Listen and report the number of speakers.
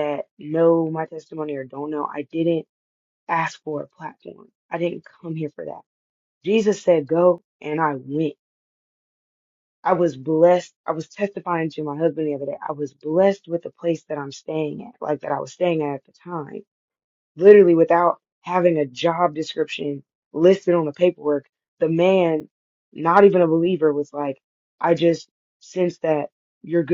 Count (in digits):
1